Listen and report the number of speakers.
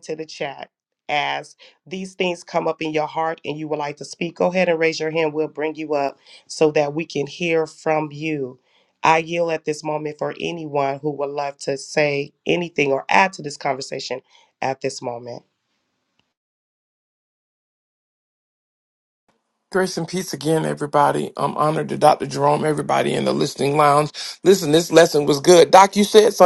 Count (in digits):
2